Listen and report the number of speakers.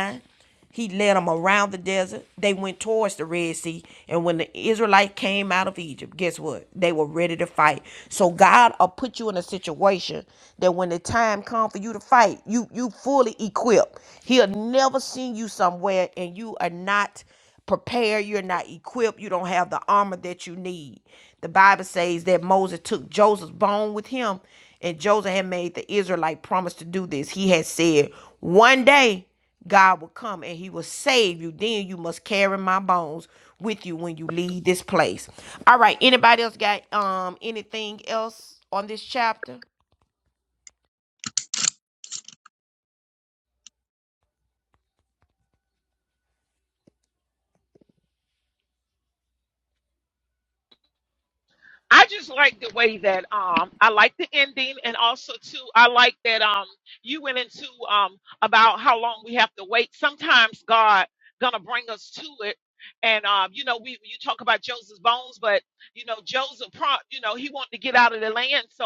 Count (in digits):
2